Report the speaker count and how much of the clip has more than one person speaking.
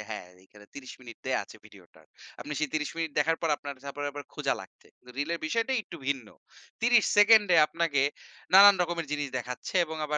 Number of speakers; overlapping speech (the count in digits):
1, no overlap